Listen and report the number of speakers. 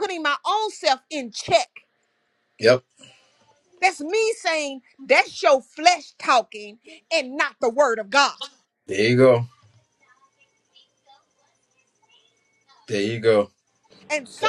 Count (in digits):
2